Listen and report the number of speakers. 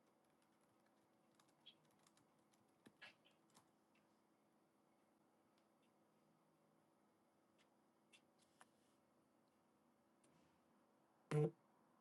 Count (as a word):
zero